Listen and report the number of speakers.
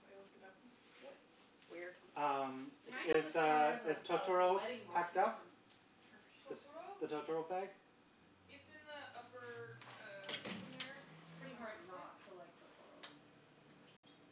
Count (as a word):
three